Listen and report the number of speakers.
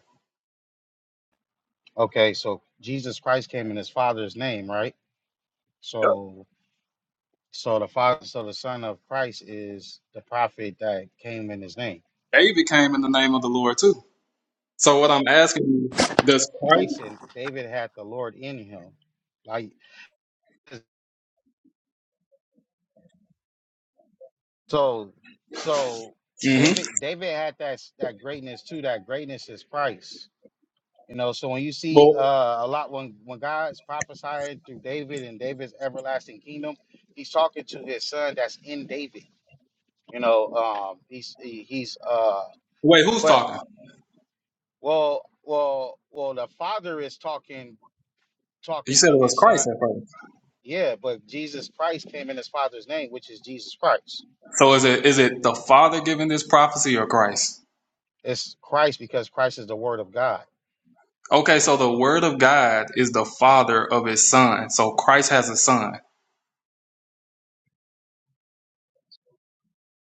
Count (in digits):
2